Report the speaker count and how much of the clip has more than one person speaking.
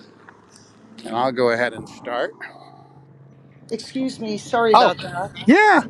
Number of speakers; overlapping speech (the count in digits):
2, about 4%